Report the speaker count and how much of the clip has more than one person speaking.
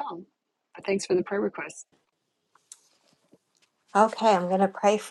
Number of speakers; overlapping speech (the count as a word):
two, no overlap